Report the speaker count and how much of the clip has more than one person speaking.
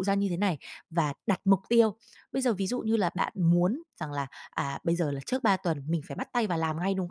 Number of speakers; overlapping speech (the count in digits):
1, no overlap